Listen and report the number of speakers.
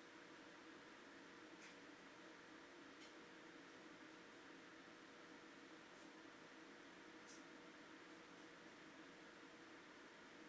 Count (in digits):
0